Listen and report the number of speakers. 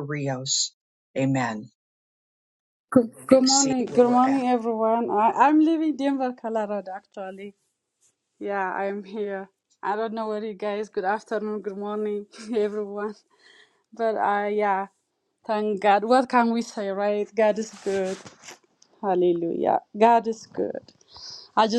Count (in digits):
2